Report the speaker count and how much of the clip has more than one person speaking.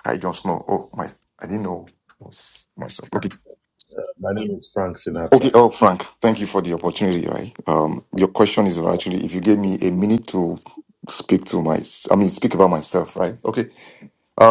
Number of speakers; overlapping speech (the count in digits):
2, about 1%